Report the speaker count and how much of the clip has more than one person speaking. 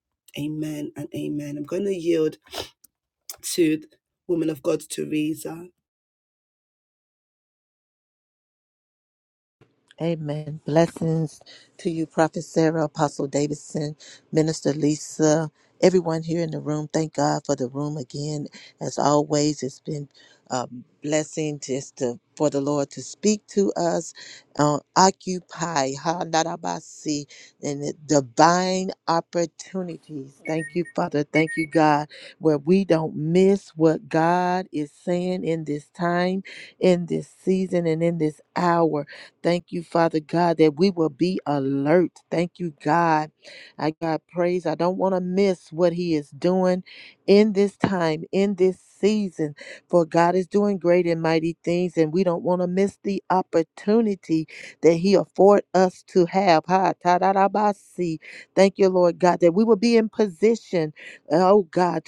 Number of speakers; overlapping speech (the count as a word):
two, no overlap